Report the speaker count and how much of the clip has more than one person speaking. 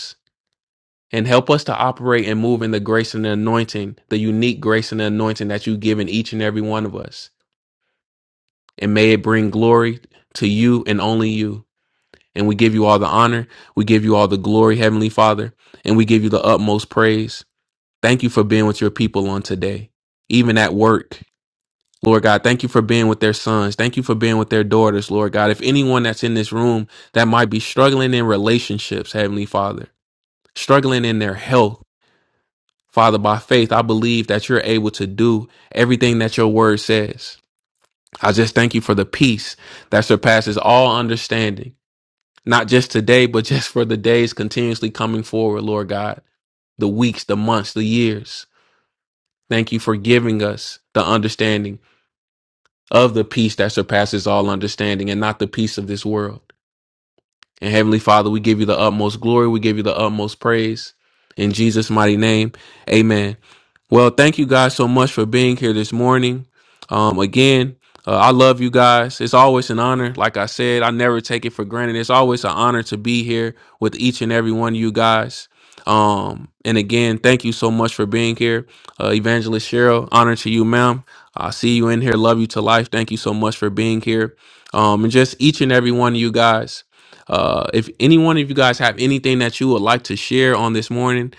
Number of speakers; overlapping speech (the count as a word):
one, no overlap